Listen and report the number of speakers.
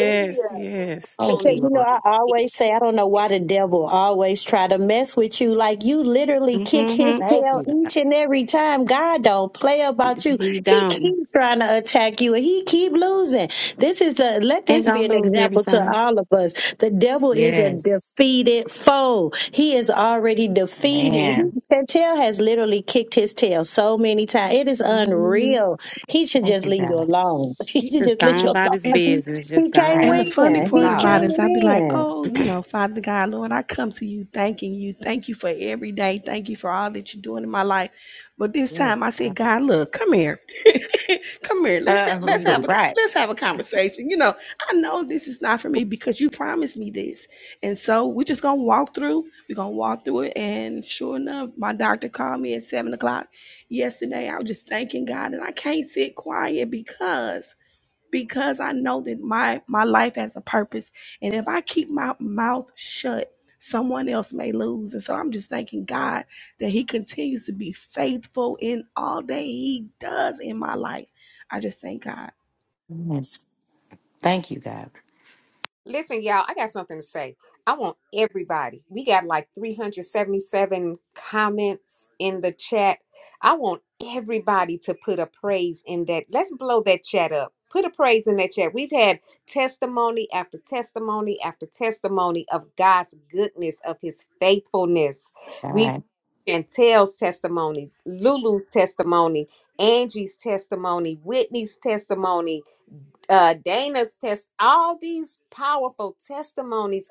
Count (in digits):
5